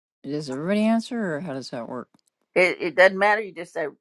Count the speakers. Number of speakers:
two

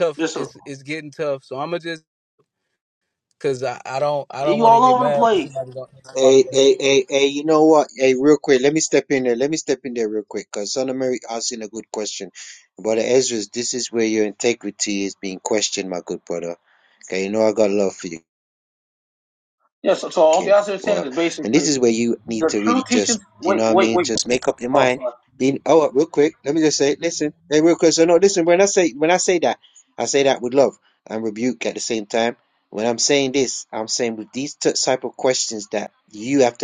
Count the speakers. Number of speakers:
three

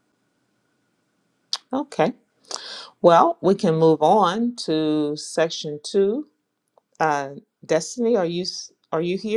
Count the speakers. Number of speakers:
one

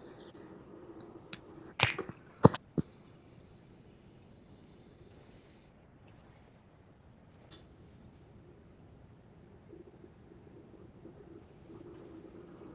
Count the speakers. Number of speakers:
zero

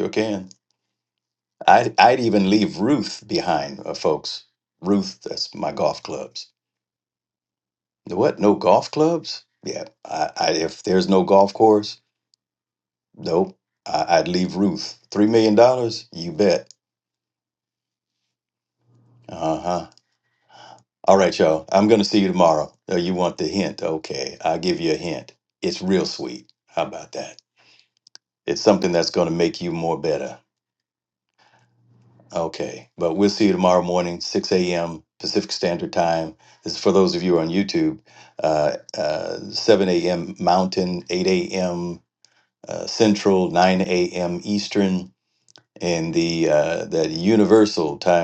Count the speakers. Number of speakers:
one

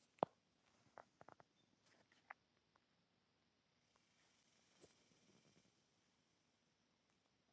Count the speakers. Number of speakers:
zero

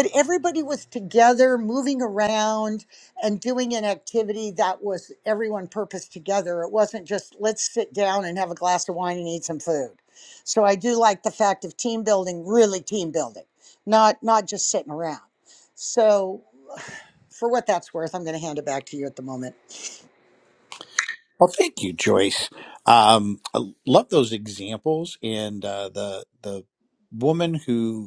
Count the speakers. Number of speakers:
two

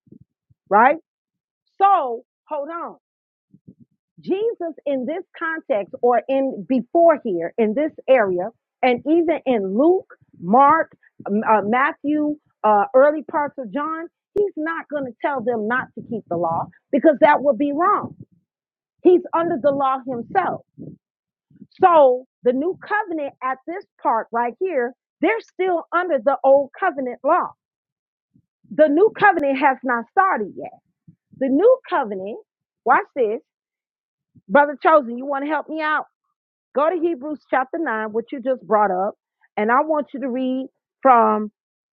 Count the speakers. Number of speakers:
one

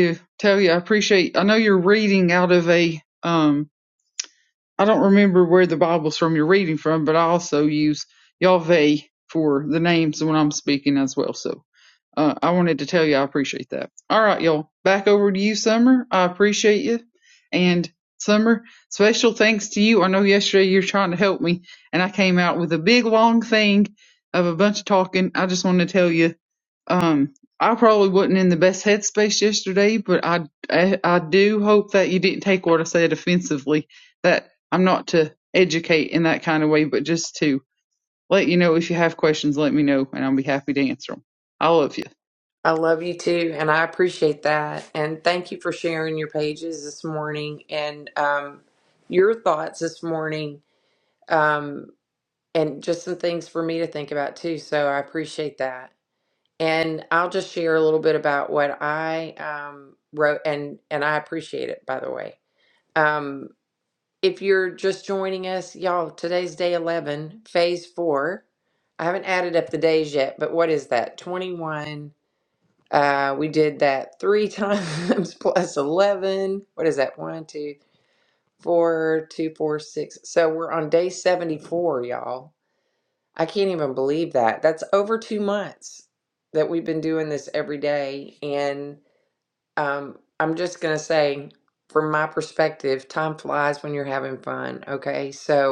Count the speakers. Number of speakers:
two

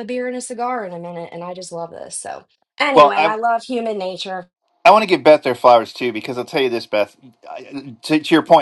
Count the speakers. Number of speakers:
two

